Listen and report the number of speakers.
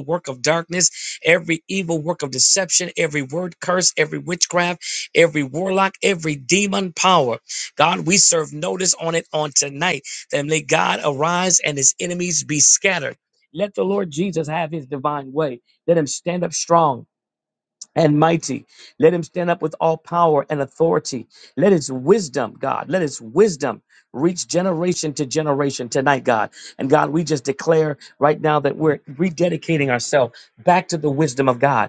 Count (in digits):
1